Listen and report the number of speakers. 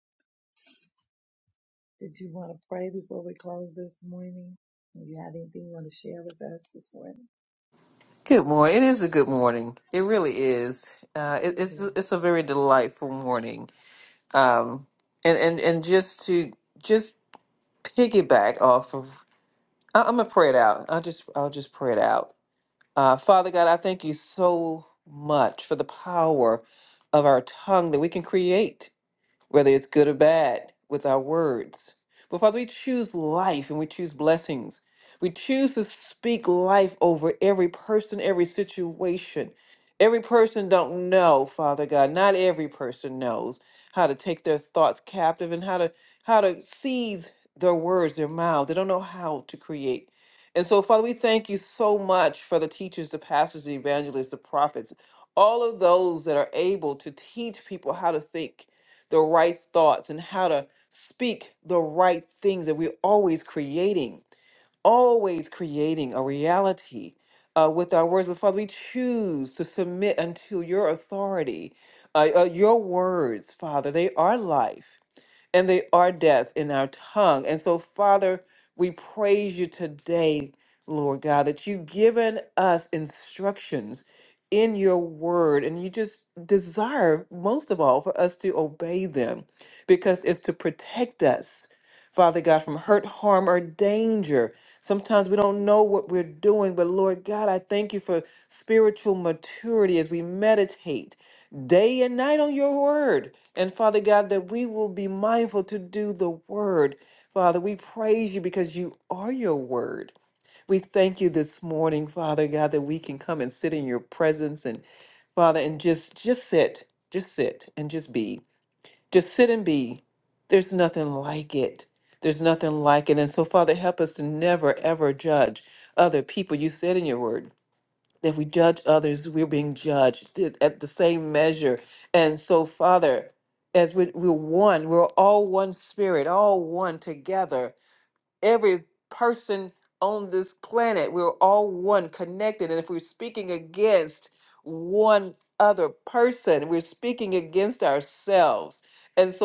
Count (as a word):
two